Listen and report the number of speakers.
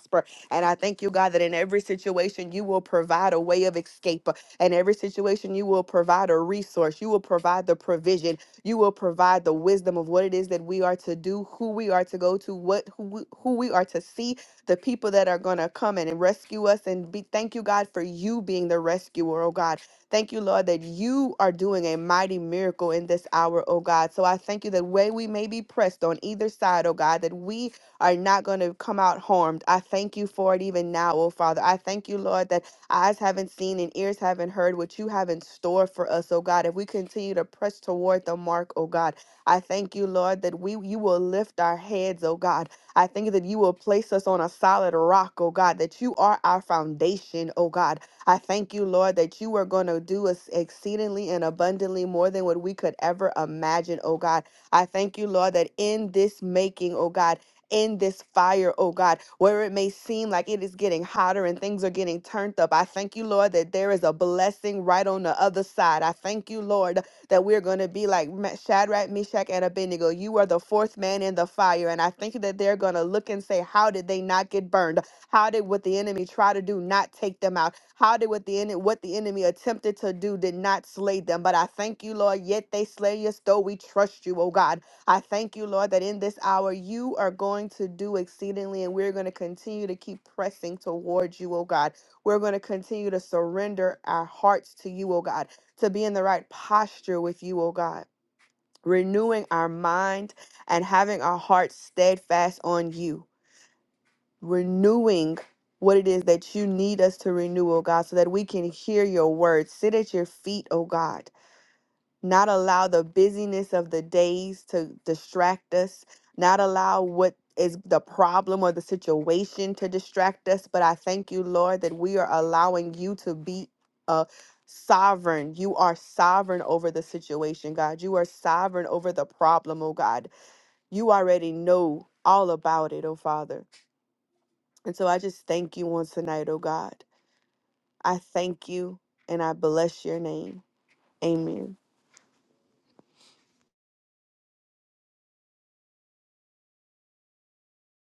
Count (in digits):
1